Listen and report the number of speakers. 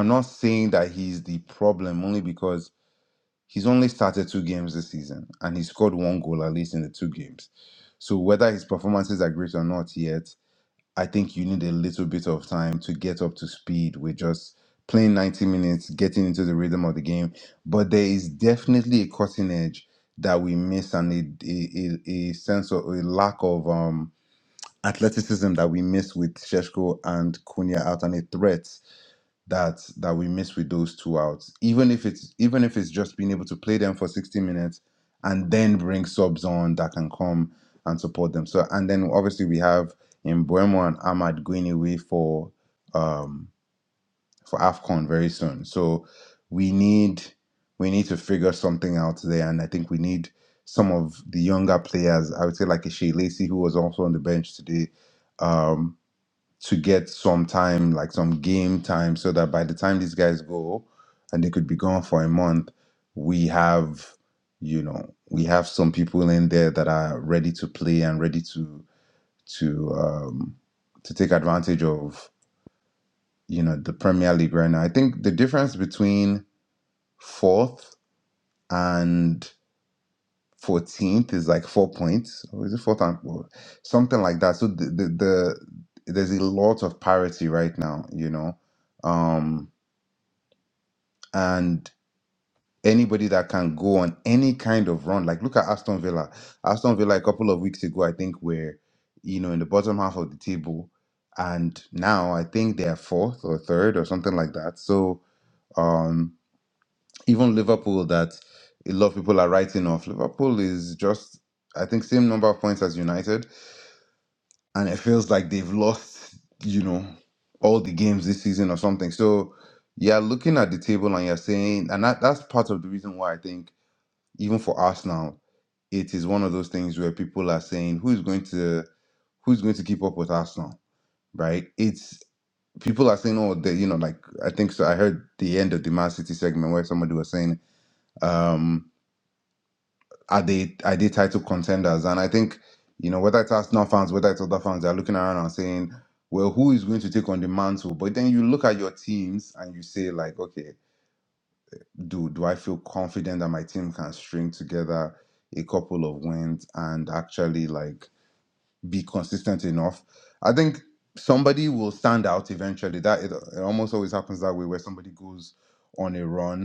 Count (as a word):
one